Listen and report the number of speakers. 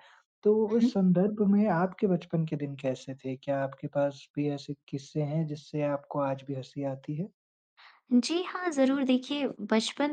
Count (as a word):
two